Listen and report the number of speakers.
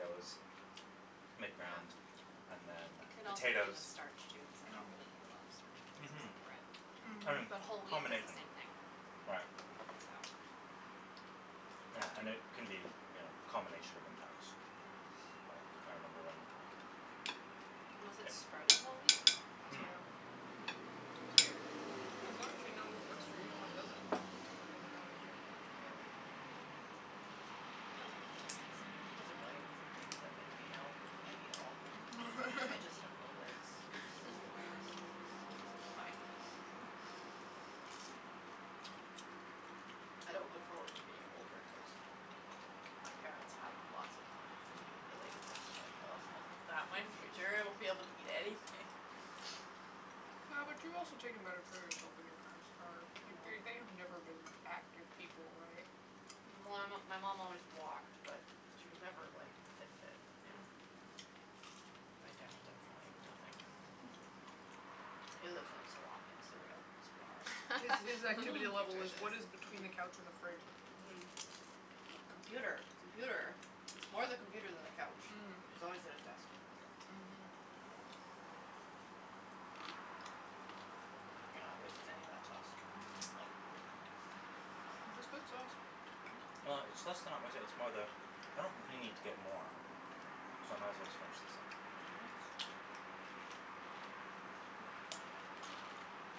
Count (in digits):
4